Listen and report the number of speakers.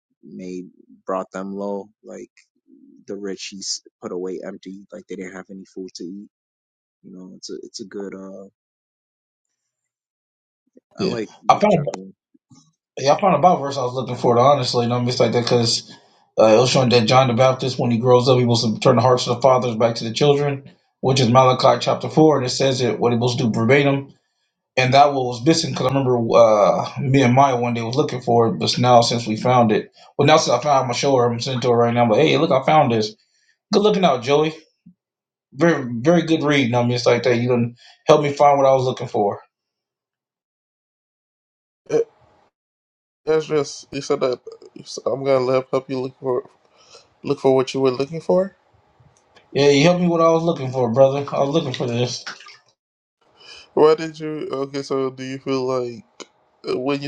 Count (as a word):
three